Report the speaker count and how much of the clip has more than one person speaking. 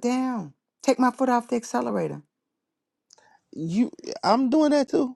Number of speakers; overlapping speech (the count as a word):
two, no overlap